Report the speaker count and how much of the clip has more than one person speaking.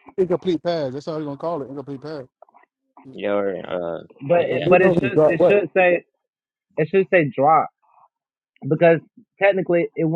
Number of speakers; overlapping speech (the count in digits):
3, about 12%